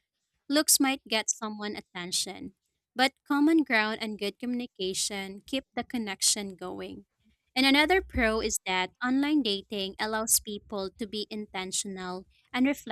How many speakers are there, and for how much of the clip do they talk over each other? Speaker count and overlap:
one, no overlap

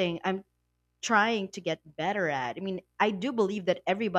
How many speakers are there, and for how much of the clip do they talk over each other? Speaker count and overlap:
one, no overlap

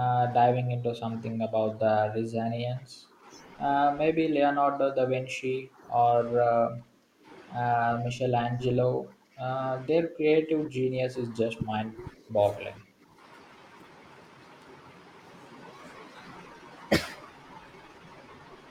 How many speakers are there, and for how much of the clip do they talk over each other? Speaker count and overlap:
one, no overlap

